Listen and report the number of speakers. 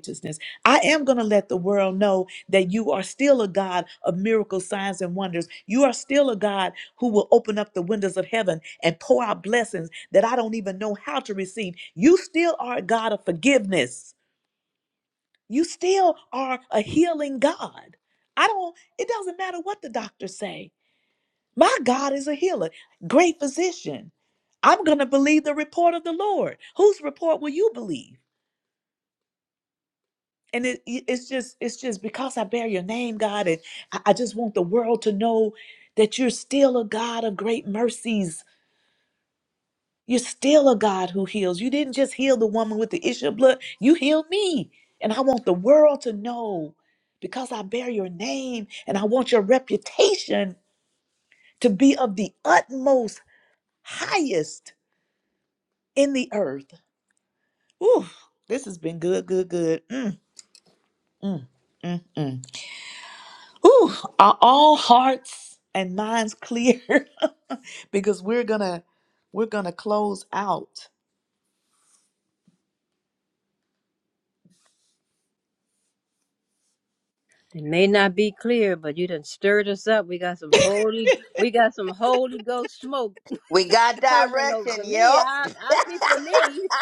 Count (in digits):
3